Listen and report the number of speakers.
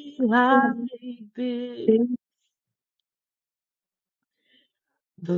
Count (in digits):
1